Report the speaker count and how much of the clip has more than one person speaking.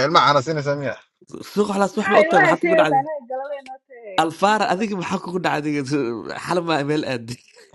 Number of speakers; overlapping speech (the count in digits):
3, about 22%